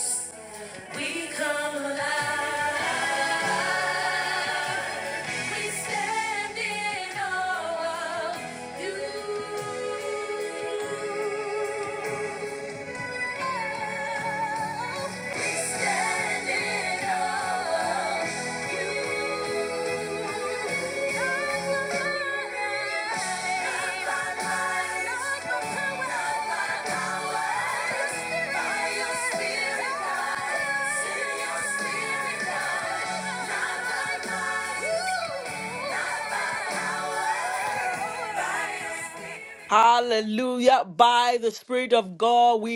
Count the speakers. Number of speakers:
2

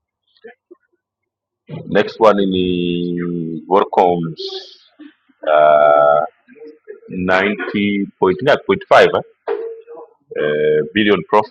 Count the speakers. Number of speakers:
1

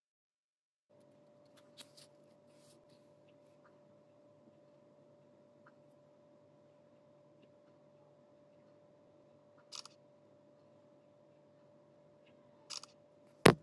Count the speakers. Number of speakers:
0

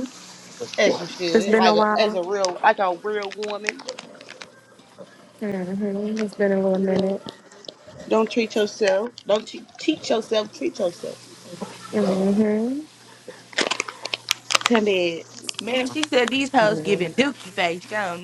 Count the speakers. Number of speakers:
3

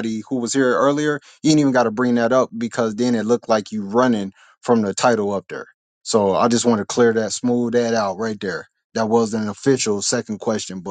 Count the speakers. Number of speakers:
1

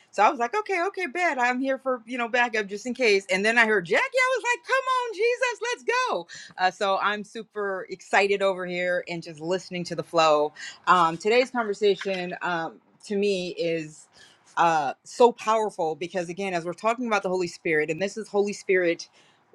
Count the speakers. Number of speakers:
1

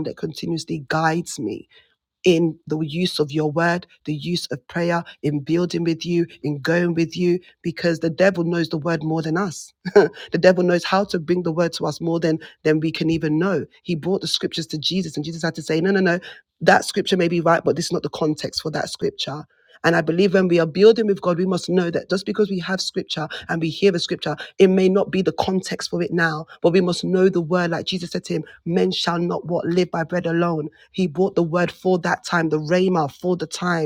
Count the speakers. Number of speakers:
1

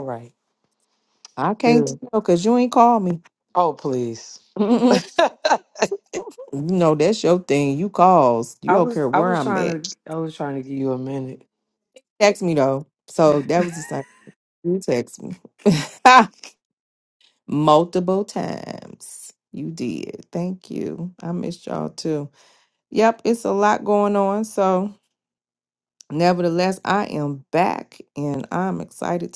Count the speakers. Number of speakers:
2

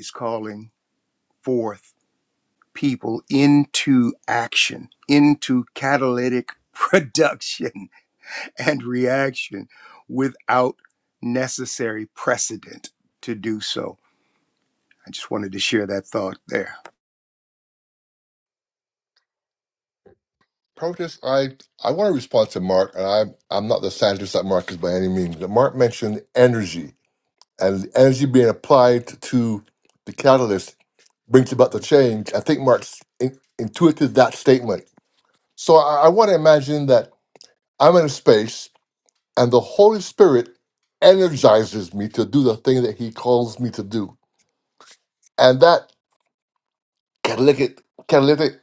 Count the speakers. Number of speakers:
2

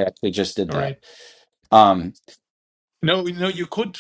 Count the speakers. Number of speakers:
2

